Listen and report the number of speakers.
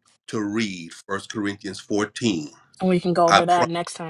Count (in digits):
2